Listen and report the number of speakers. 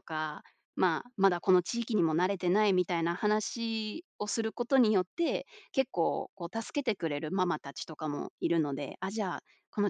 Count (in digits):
1